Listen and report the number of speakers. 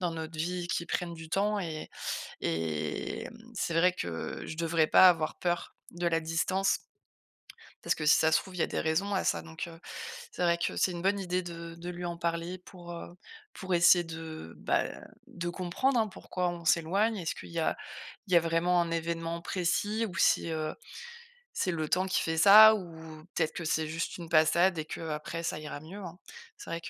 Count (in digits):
1